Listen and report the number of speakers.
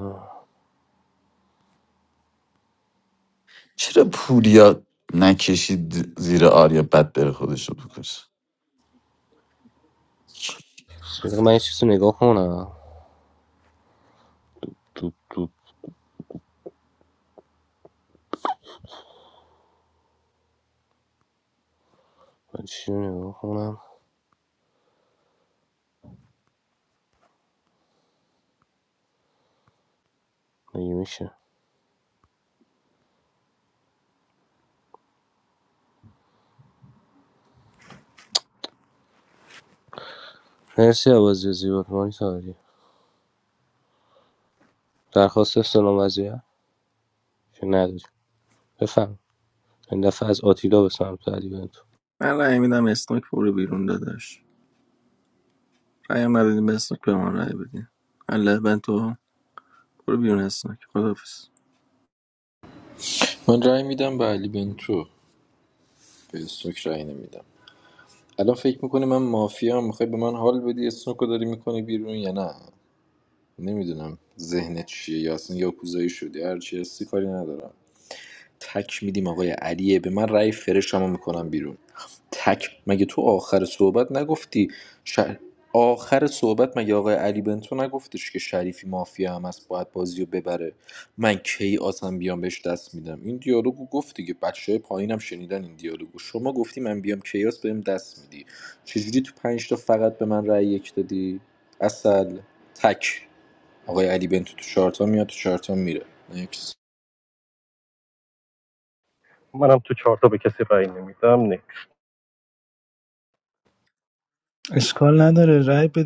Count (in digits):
6